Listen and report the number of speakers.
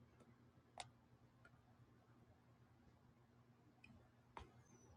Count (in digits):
0